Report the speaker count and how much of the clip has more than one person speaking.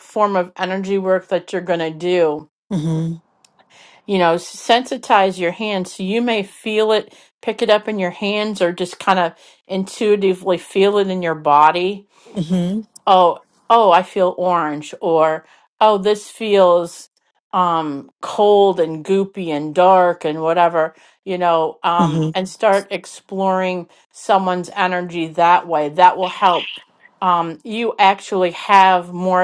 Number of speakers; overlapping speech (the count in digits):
2, about 1%